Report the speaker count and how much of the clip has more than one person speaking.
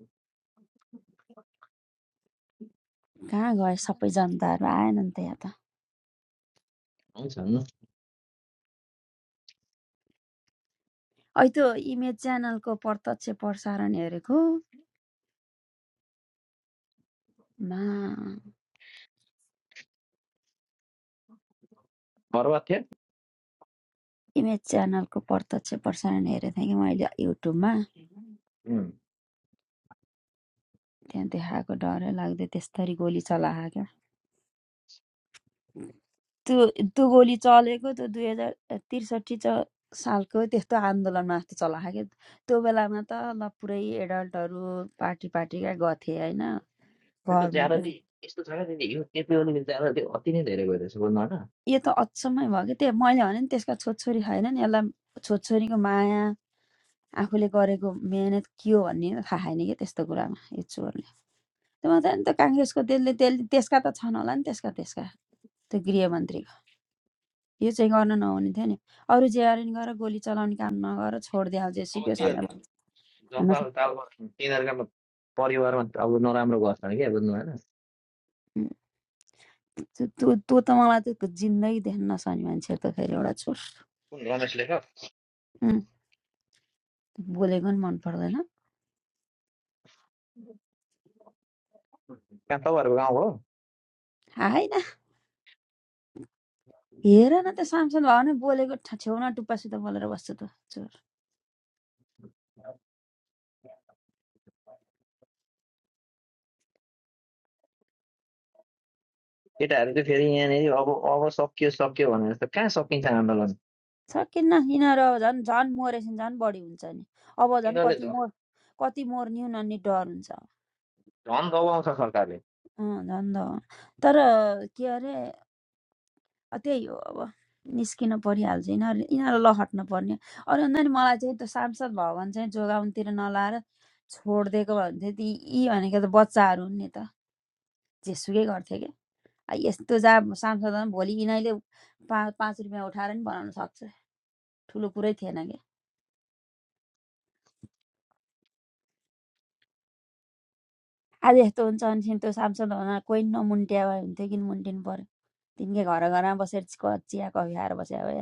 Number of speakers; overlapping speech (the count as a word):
two, about 1%